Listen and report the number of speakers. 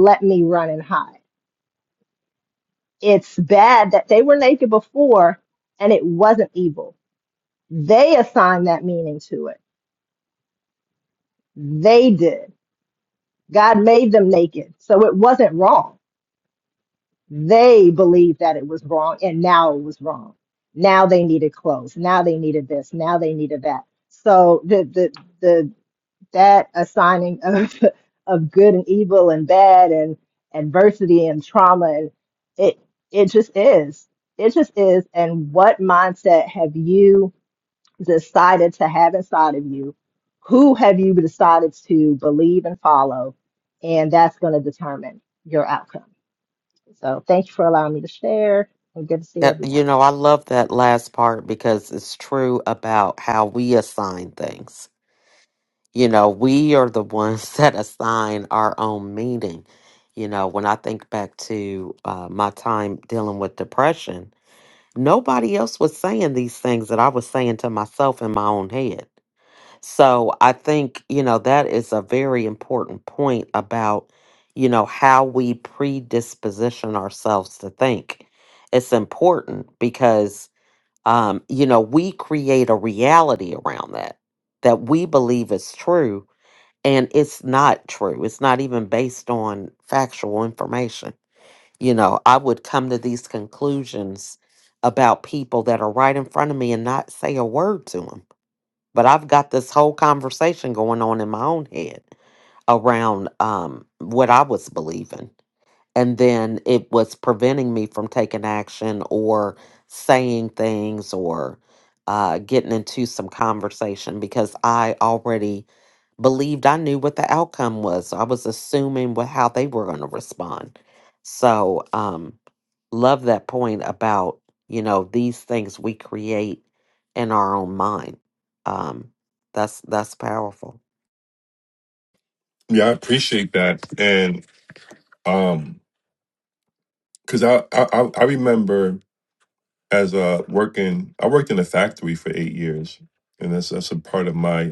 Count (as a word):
three